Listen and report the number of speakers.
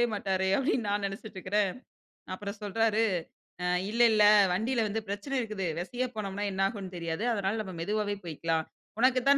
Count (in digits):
1